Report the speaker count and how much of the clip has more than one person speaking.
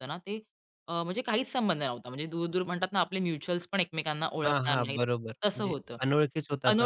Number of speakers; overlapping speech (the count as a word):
two, about 20%